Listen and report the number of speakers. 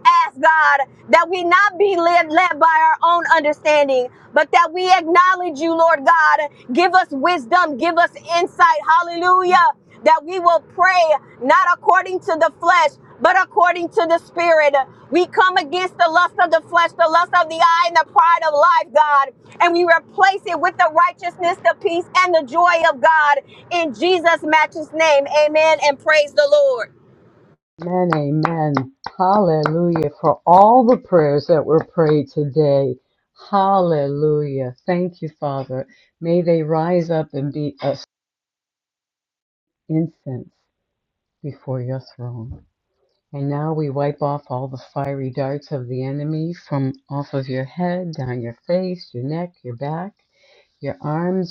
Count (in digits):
2